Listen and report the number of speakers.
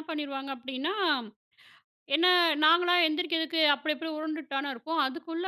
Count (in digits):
1